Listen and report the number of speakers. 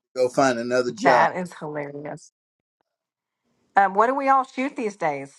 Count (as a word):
two